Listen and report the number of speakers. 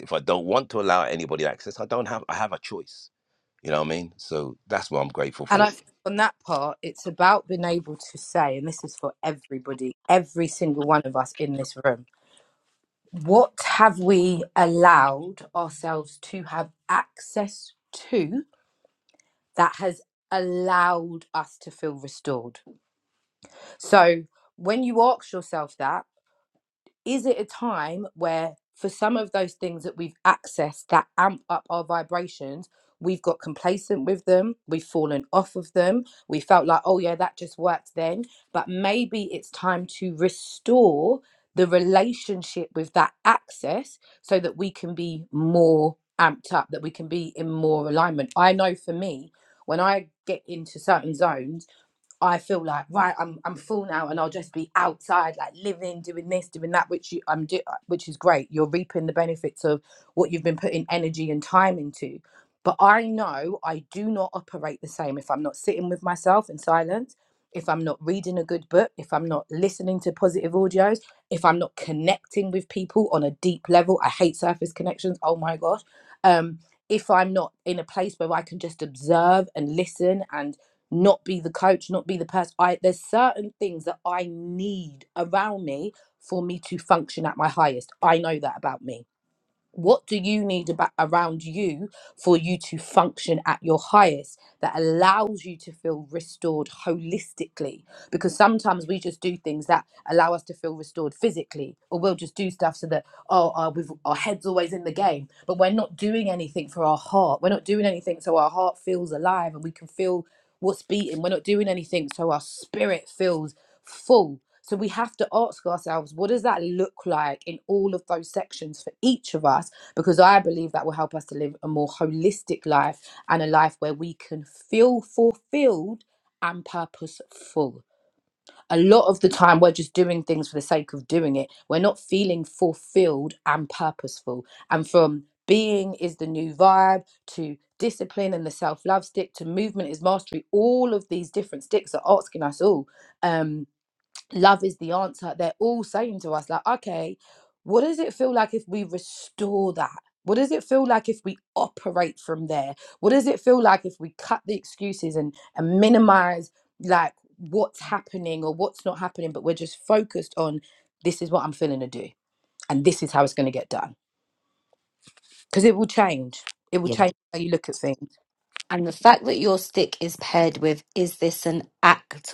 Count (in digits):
3